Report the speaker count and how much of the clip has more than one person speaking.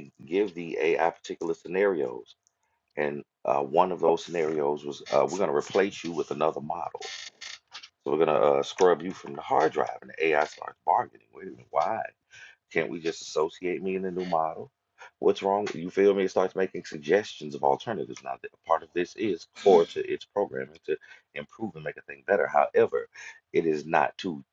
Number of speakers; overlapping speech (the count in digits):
1, no overlap